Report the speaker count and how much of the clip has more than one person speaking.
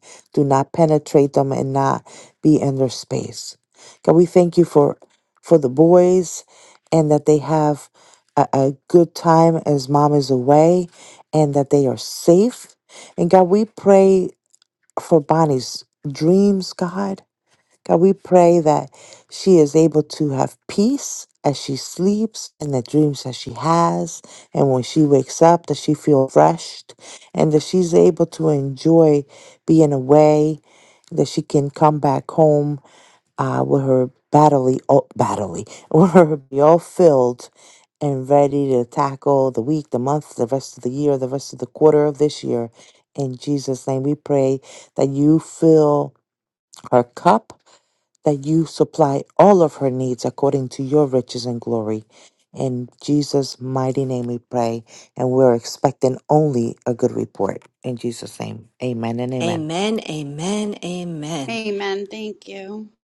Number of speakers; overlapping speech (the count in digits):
3, about 1%